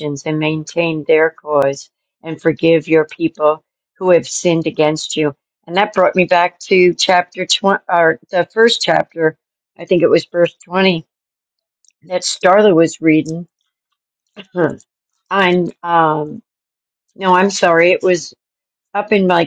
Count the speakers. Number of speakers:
one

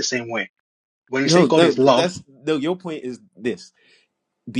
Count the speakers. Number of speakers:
two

